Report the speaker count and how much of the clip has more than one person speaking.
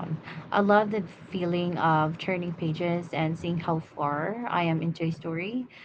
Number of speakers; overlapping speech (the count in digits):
1, no overlap